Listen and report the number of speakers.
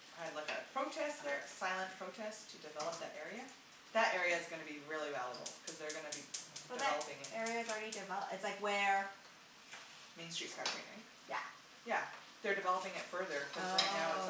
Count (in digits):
2